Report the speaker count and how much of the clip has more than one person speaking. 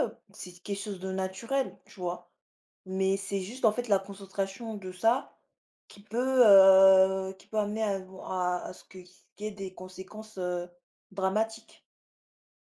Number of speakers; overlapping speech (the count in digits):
1, no overlap